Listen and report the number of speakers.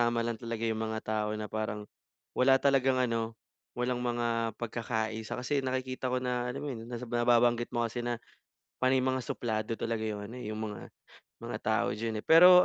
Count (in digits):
1